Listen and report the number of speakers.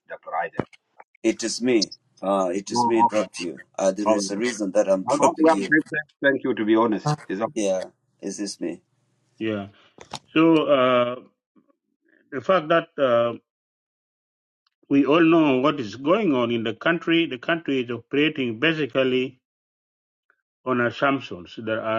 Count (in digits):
3